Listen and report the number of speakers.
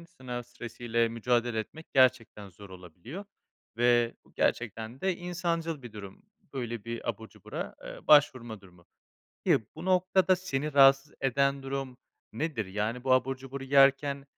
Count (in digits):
1